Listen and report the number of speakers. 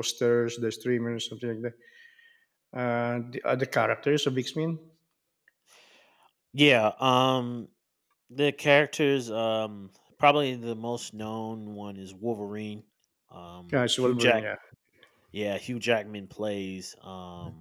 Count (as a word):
two